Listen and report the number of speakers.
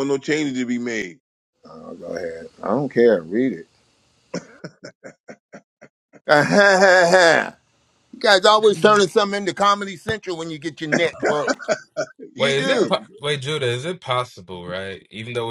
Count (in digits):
3